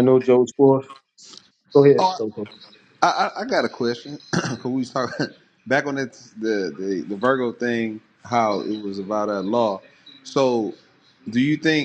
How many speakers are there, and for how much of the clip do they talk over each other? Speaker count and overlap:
2, no overlap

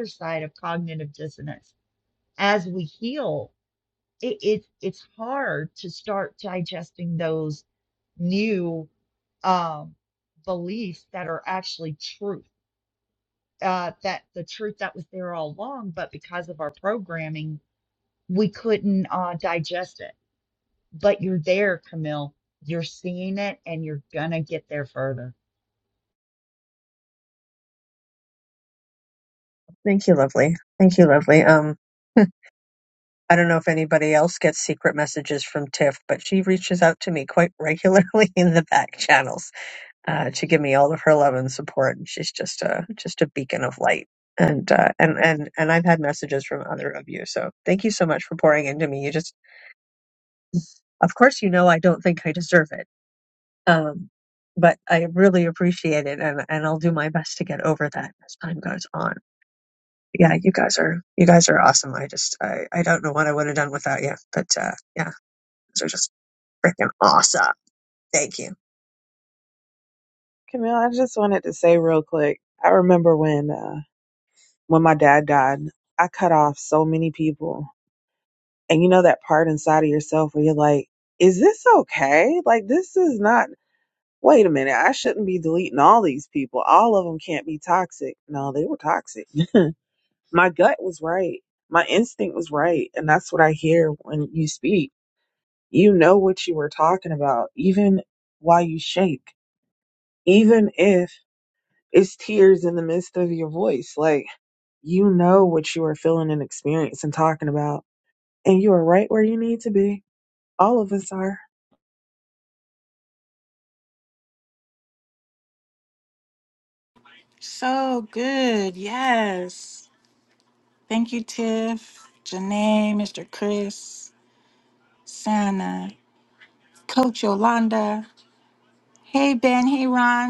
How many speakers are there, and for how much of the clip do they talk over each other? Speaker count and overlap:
4, no overlap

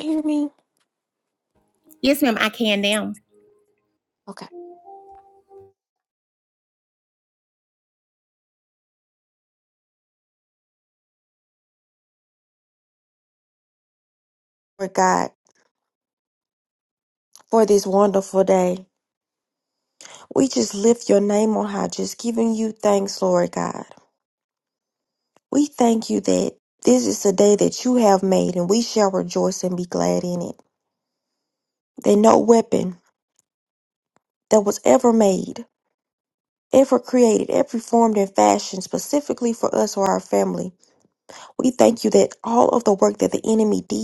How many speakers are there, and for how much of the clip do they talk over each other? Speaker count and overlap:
2, no overlap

